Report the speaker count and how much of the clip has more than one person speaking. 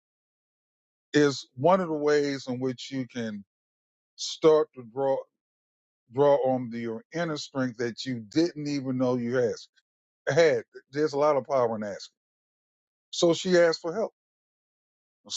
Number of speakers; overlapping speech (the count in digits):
1, no overlap